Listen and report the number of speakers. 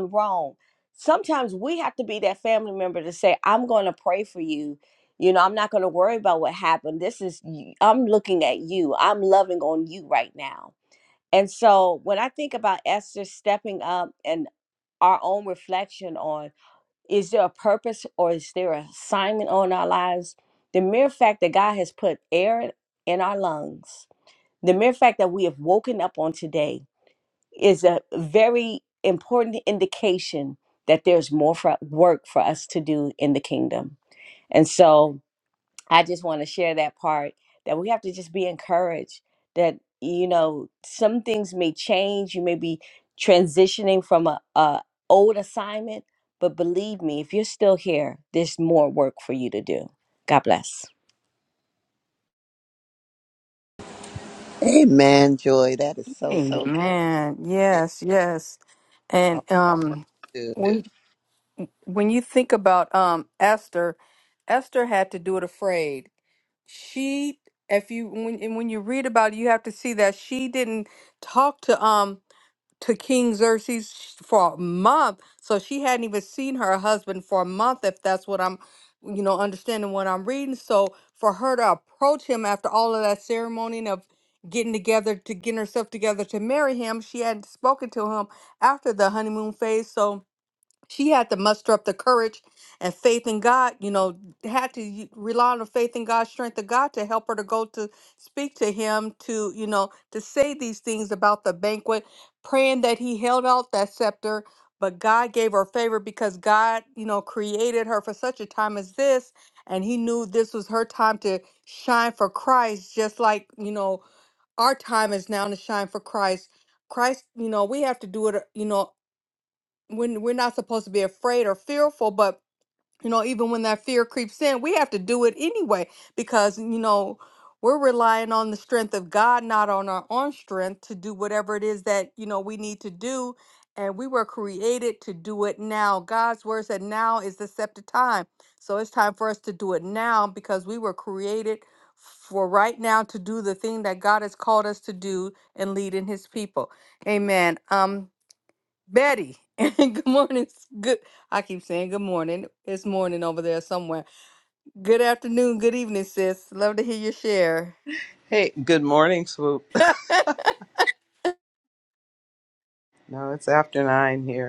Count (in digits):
4